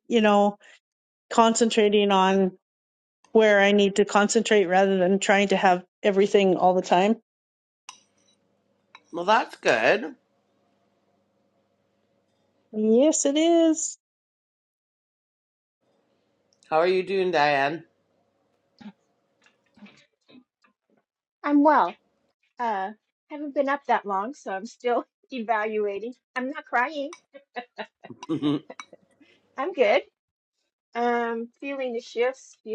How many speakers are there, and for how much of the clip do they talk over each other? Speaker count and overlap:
3, no overlap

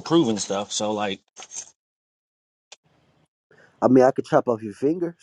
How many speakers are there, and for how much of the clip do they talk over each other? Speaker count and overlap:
2, no overlap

